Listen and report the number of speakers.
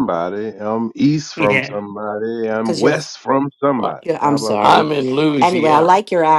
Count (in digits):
3